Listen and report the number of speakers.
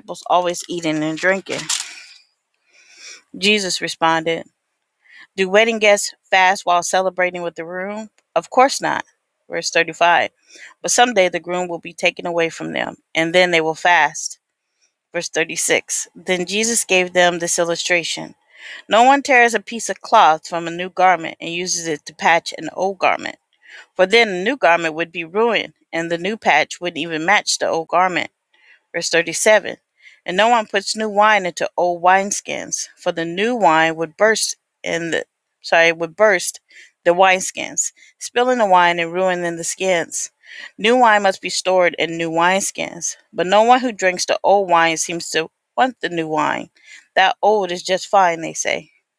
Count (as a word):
one